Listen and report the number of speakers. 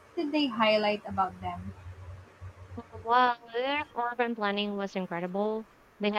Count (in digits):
2